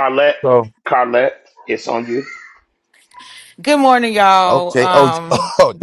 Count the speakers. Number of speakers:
three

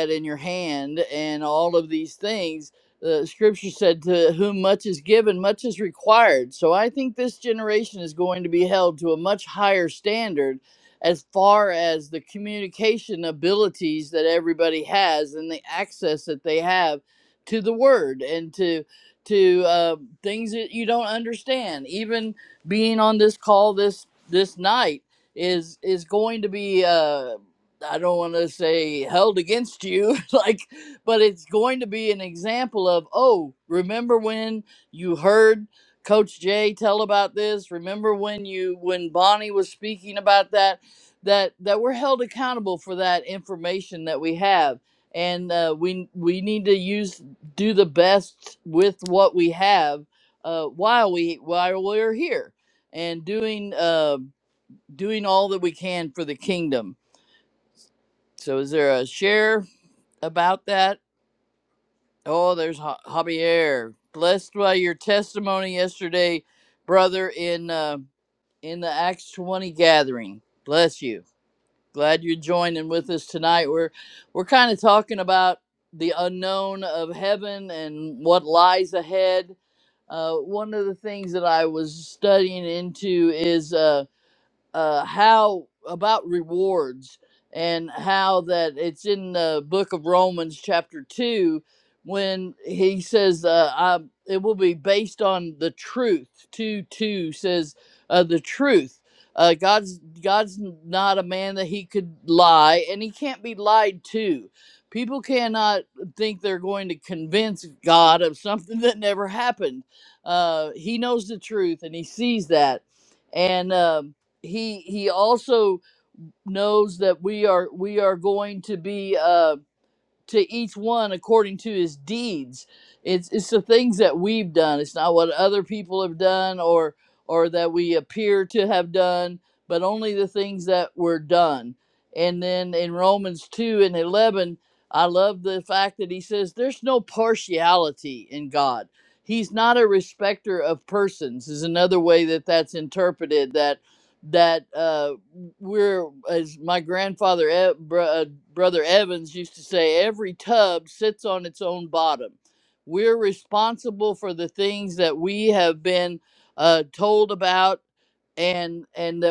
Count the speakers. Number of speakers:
one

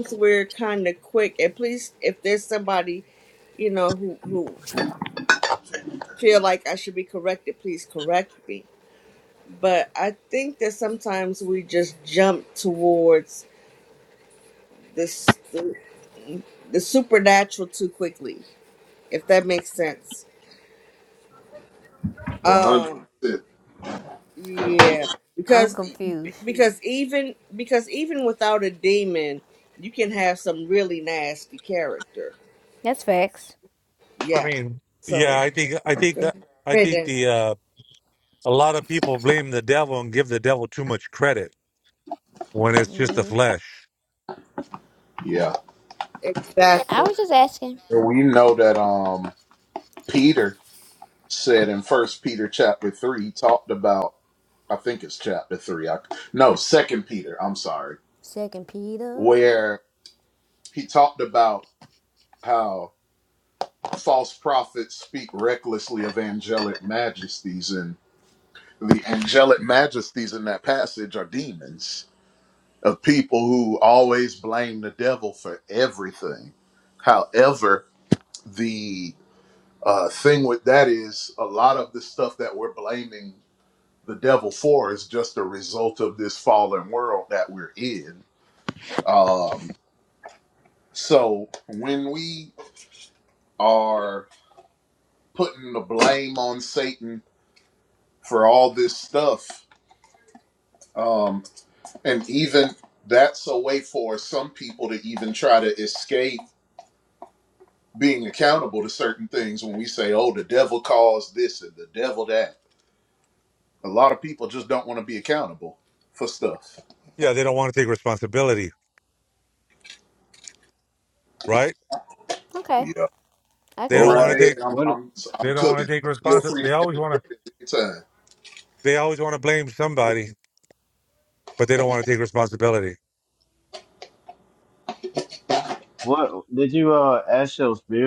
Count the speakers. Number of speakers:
five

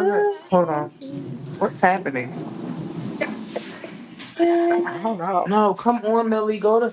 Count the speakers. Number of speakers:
two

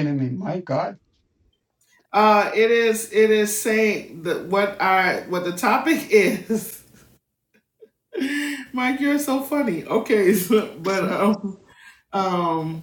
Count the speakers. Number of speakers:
two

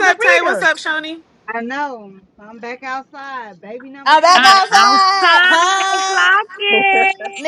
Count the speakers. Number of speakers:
three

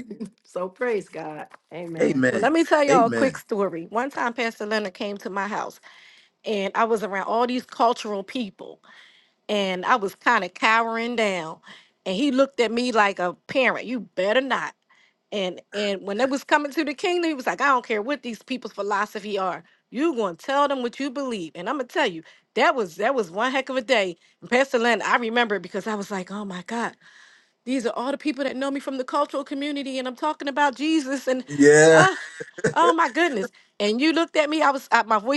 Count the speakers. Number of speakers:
three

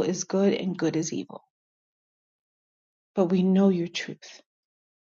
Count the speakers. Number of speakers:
one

